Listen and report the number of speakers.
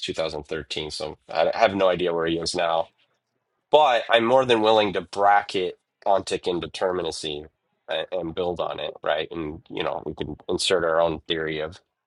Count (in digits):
1